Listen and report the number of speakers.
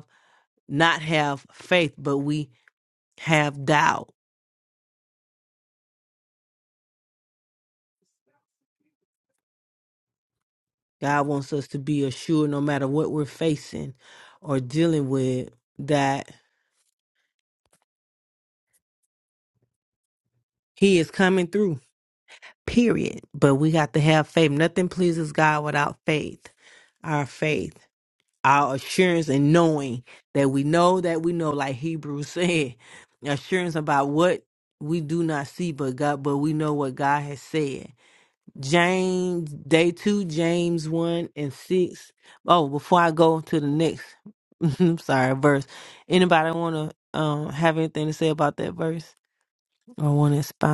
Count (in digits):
1